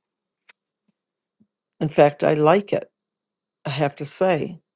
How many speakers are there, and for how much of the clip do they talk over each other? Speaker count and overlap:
1, no overlap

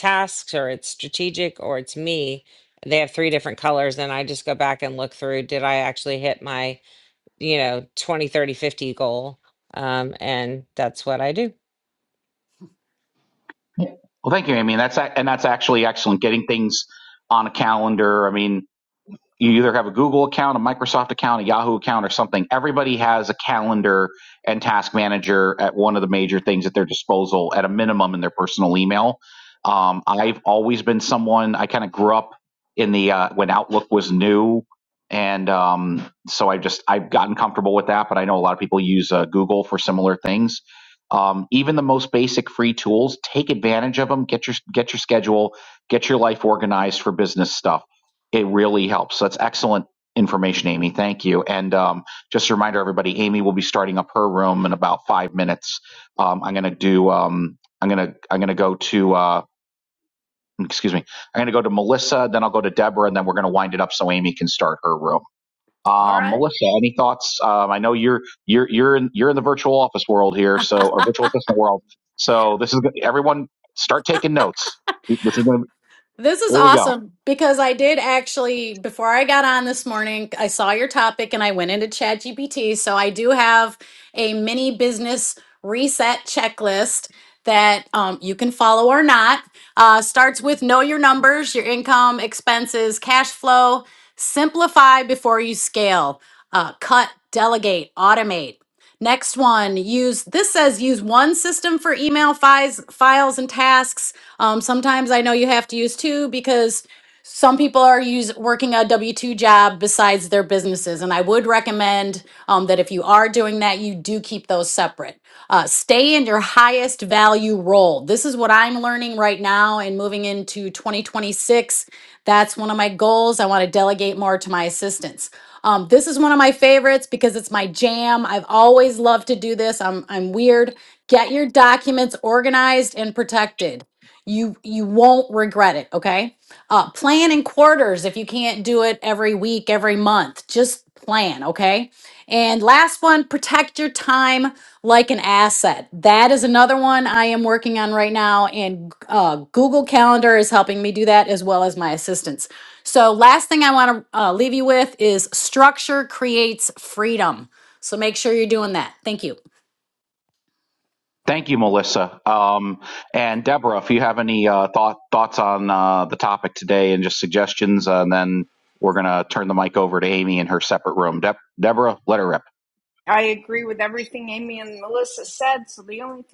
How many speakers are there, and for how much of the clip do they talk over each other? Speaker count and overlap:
4, under 1%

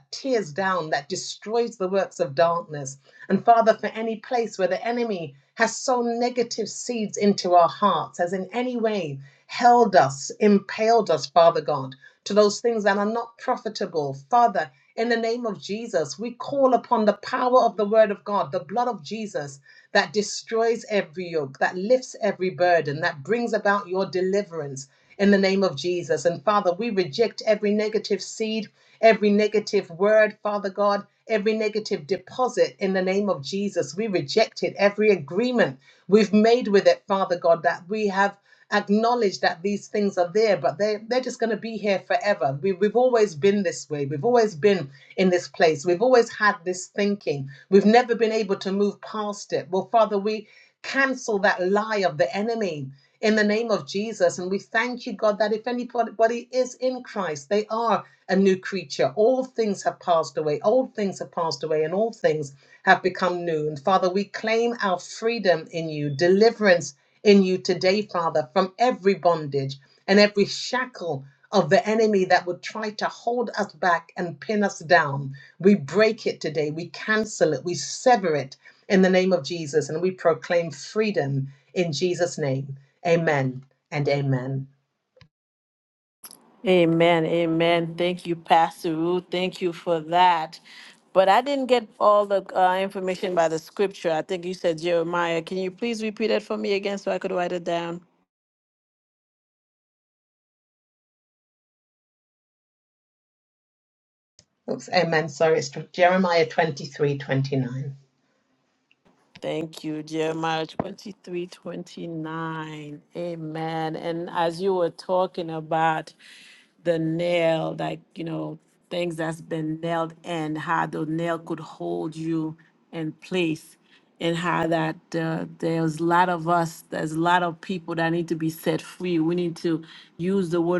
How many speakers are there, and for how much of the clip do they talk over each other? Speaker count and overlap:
2, no overlap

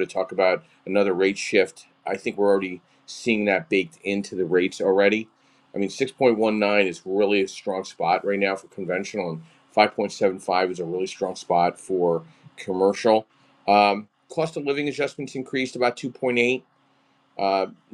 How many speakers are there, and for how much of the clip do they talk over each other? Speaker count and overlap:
1, no overlap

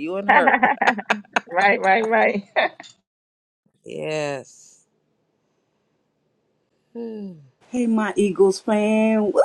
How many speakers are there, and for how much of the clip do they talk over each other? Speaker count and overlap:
3, about 3%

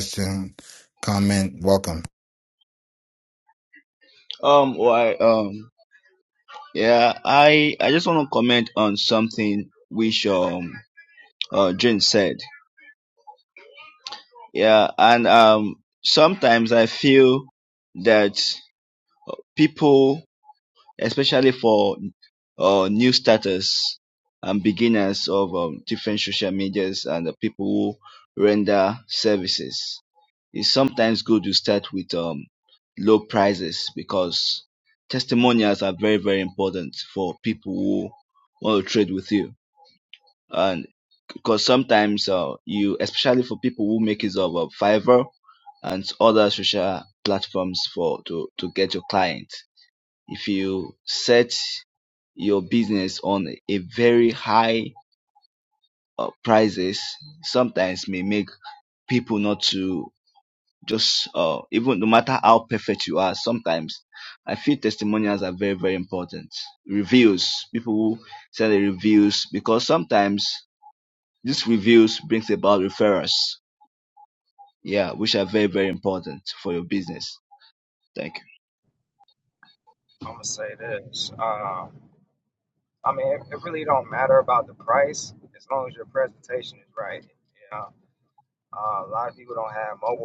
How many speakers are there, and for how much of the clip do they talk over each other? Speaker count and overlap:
3, no overlap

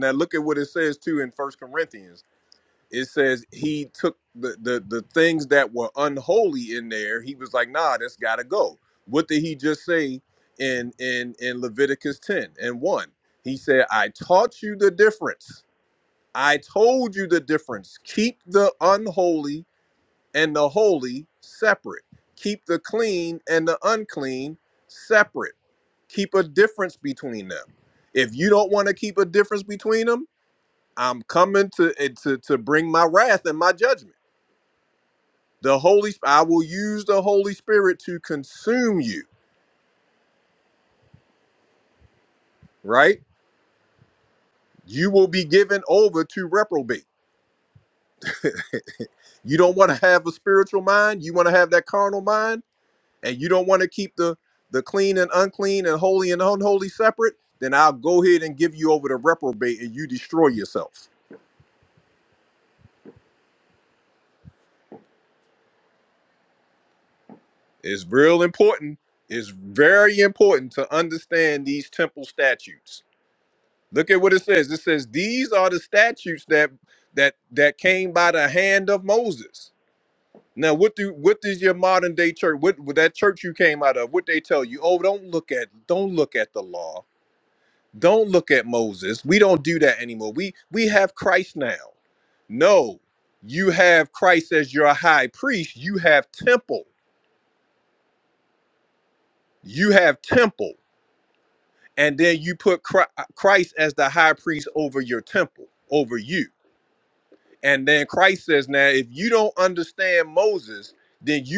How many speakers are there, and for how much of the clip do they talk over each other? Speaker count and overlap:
1, no overlap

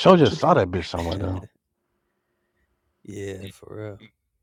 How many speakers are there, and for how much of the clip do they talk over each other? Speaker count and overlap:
2, about 7%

